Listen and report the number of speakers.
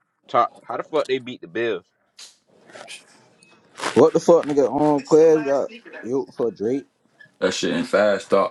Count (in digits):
3